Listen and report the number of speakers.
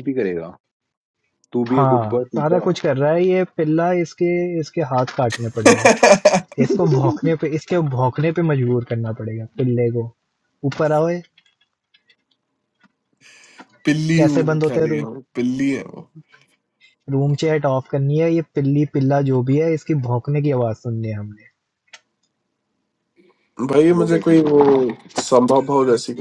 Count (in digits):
3